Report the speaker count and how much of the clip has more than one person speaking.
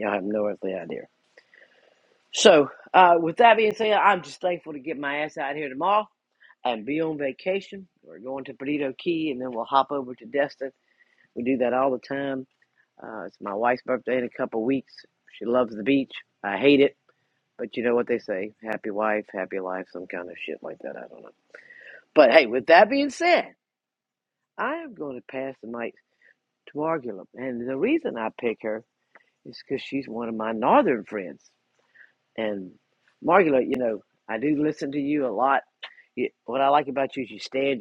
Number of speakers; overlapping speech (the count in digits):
1, no overlap